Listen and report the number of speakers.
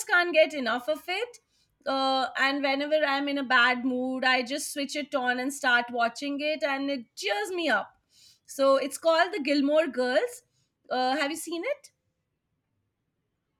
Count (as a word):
one